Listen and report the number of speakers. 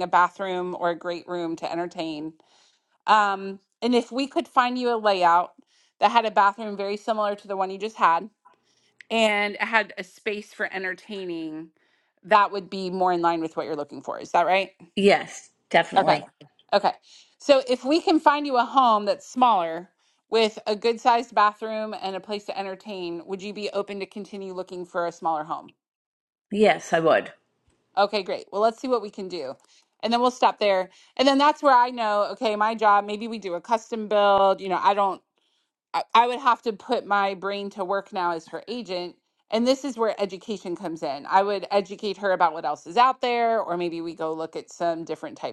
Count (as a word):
two